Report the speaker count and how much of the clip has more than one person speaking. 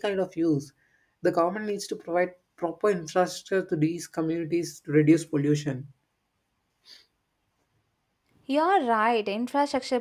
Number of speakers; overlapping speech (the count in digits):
2, no overlap